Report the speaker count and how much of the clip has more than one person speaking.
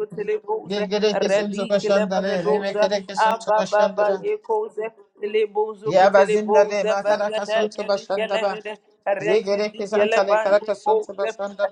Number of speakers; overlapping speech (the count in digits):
2, about 71%